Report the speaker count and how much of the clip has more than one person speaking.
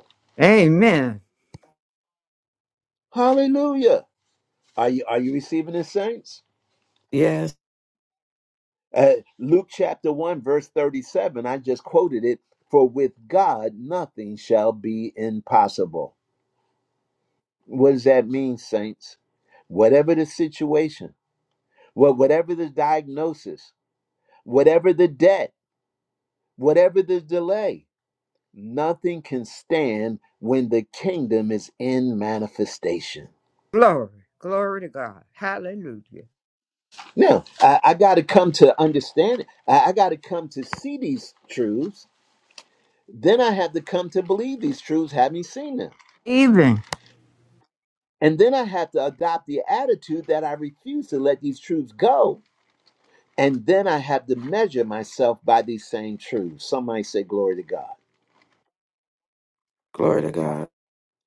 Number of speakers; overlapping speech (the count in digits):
3, no overlap